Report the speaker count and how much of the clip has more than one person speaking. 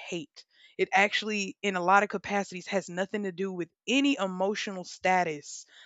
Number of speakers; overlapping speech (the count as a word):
one, no overlap